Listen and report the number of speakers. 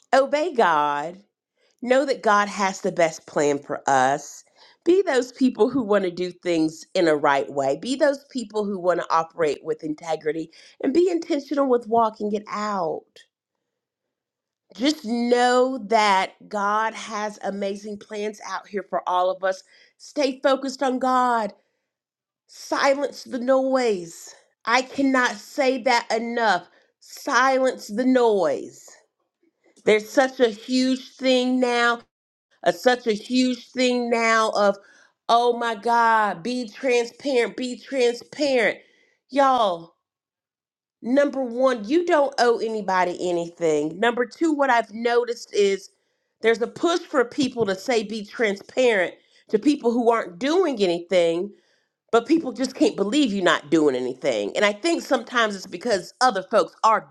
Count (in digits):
1